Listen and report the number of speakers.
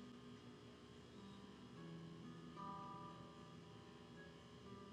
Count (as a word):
zero